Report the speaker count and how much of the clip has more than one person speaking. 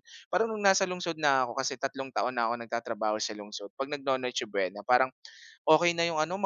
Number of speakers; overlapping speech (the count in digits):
1, no overlap